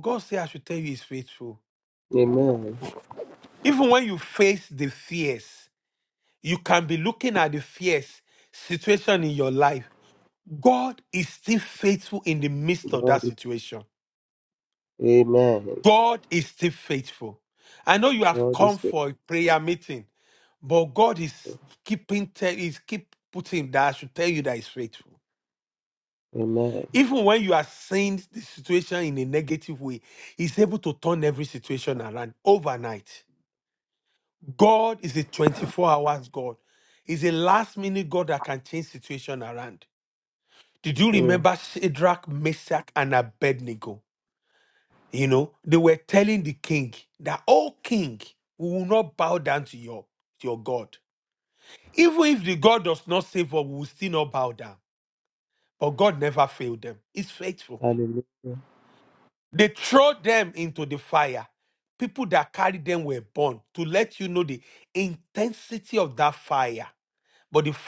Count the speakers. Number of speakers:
two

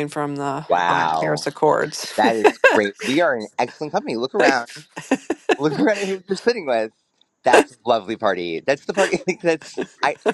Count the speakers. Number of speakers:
two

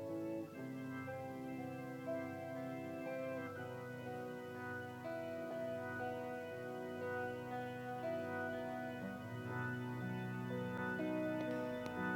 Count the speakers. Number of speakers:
zero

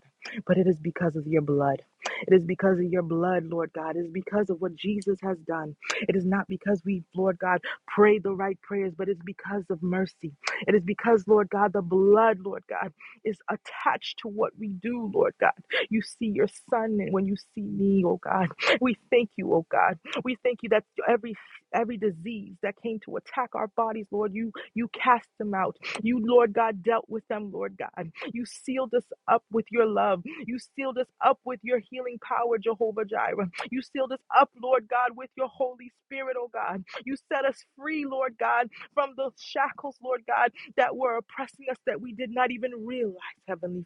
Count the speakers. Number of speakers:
one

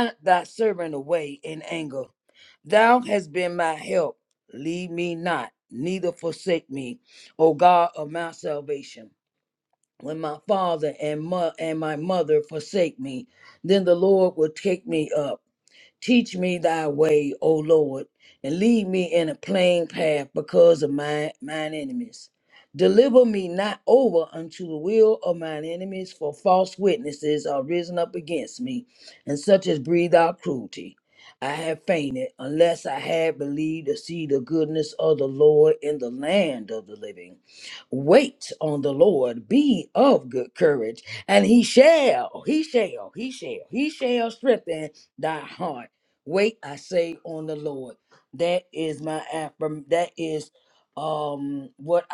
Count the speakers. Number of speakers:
one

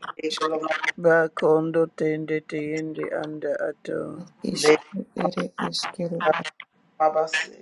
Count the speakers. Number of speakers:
three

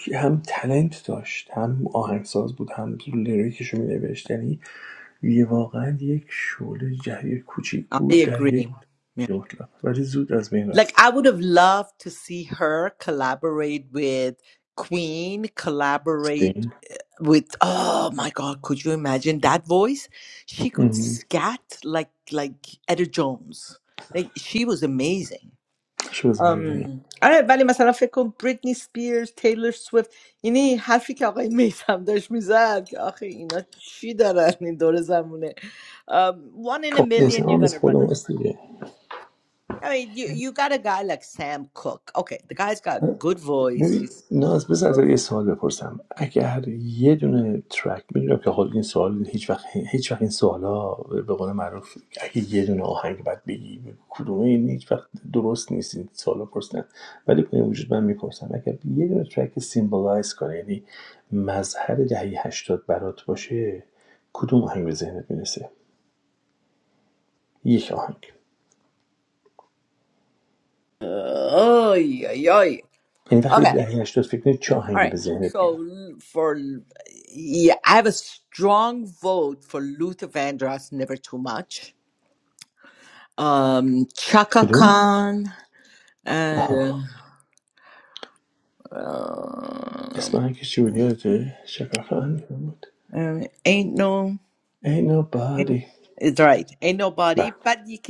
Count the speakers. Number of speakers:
two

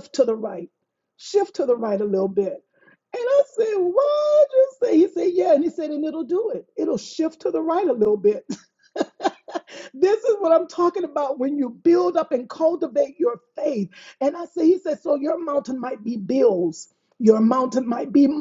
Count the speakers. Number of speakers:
one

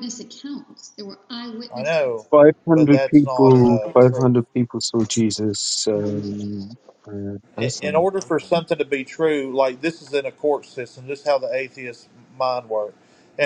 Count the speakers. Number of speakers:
three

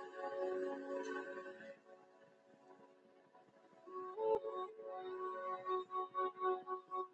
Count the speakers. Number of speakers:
zero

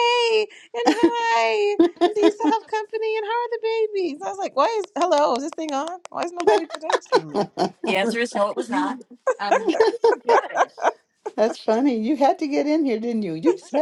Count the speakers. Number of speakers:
three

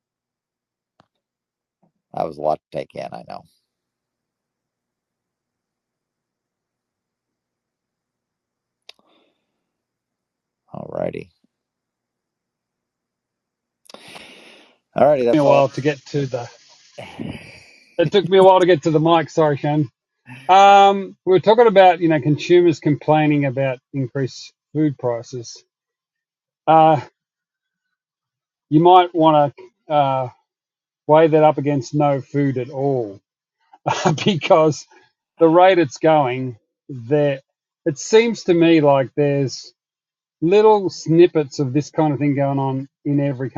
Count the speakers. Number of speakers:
two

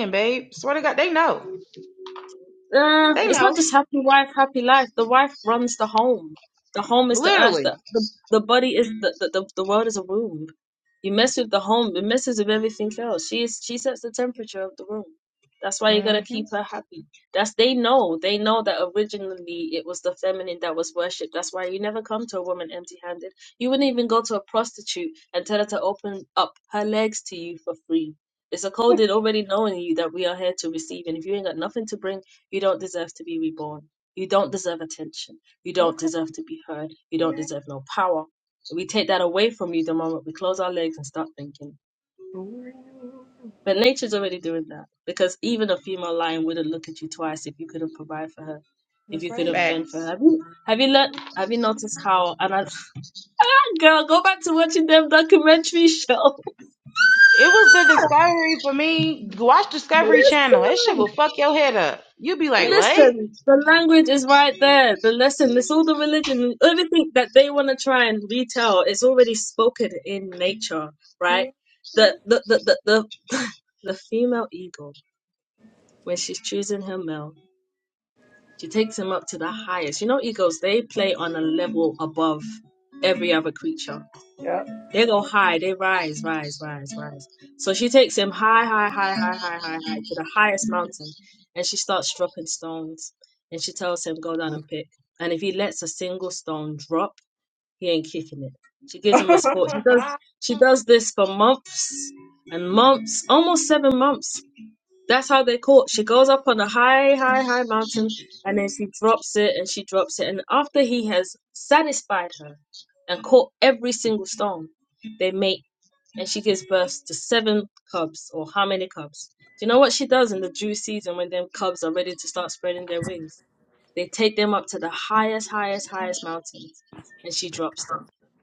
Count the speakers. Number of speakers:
three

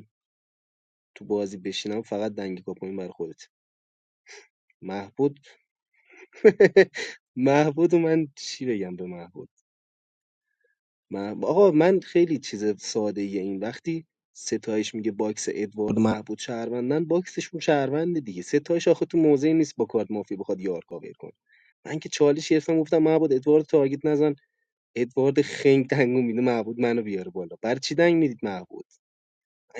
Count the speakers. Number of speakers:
one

